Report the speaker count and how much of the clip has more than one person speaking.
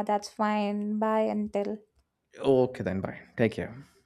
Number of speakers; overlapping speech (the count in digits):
2, no overlap